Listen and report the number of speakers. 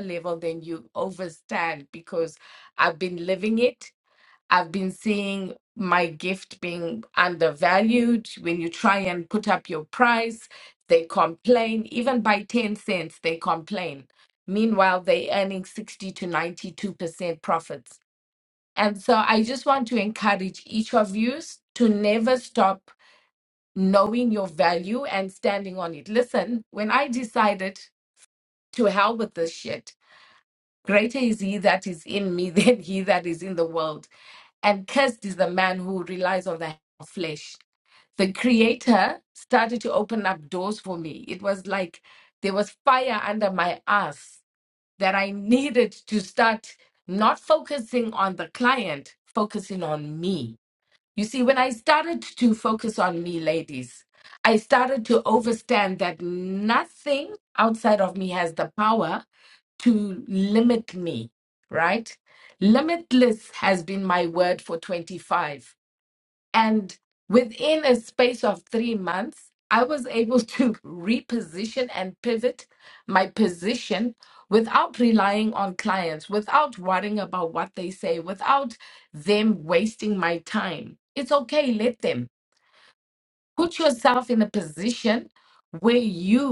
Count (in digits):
1